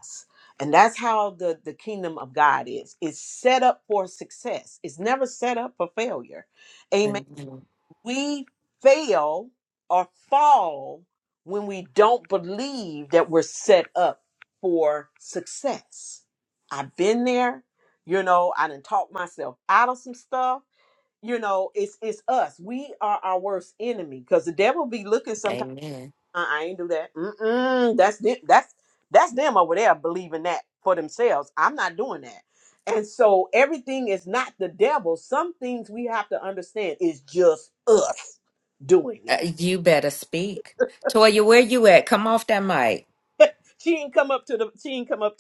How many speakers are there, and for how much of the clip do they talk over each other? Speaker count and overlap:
2, about 1%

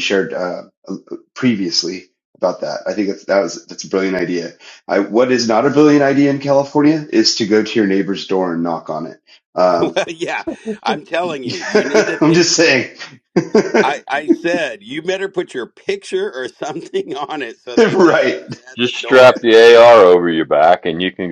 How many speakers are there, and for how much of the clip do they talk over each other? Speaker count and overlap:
3, about 8%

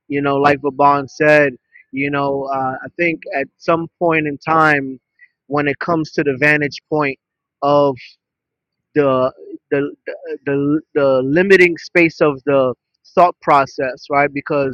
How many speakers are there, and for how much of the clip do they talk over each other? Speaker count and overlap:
1, no overlap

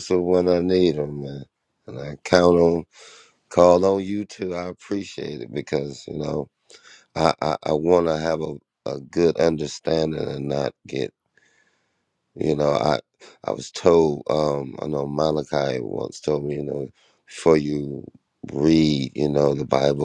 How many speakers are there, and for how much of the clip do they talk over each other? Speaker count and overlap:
1, no overlap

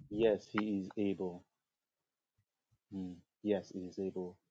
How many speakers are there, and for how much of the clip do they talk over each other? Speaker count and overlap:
1, no overlap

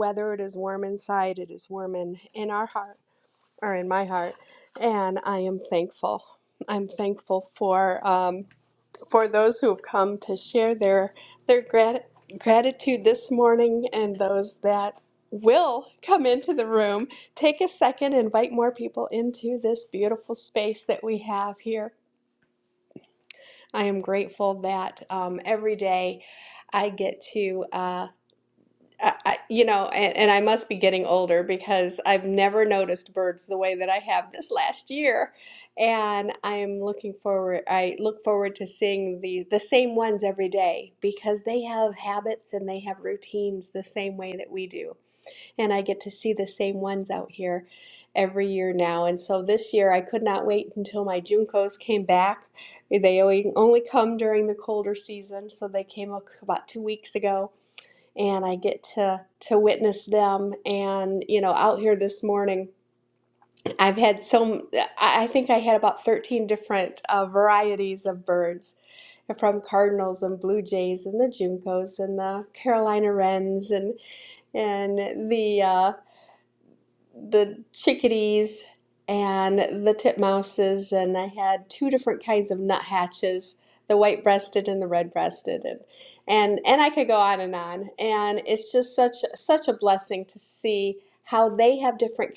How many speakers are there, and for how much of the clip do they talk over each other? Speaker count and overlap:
1, no overlap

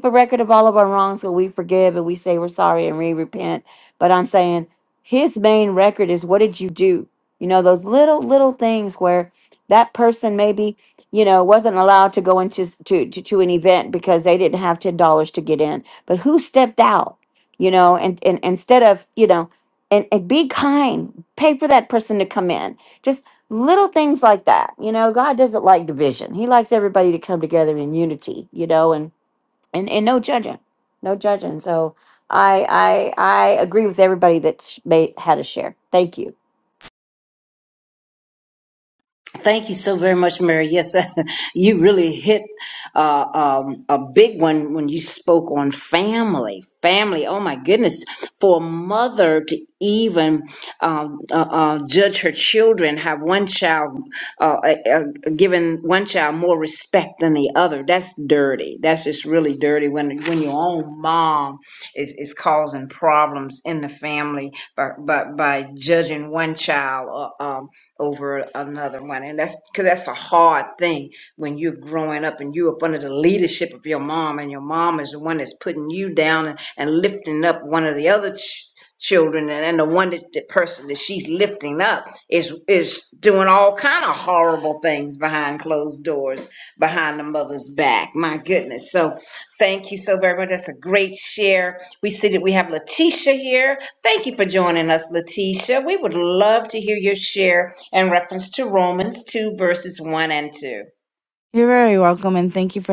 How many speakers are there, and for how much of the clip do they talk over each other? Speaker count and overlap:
3, no overlap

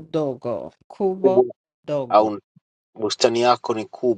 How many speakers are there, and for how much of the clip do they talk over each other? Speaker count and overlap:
2, about 11%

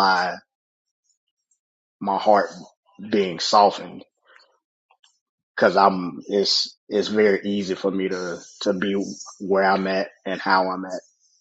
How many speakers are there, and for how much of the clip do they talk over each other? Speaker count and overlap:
1, no overlap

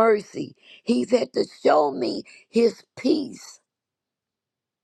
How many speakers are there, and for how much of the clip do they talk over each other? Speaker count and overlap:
1, no overlap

